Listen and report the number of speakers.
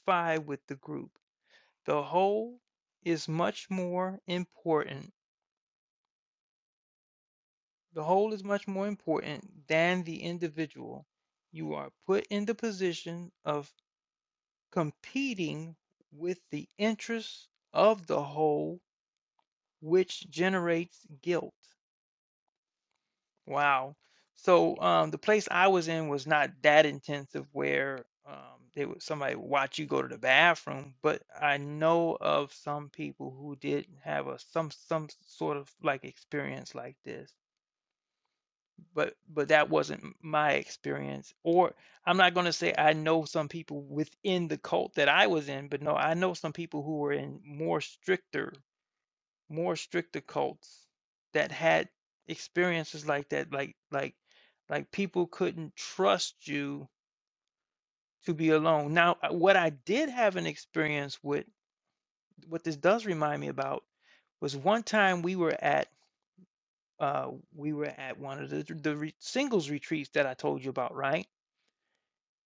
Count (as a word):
one